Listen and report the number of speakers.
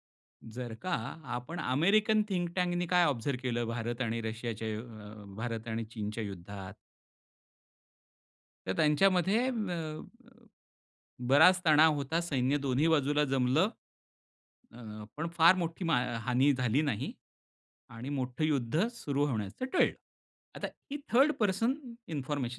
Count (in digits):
1